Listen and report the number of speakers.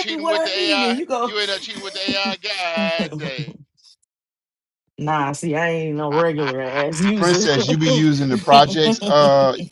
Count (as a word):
three